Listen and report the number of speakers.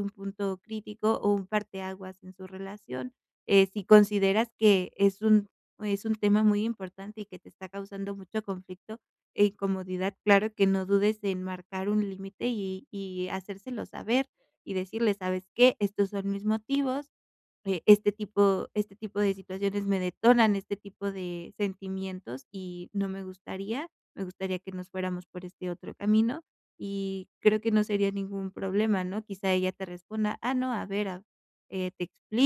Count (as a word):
one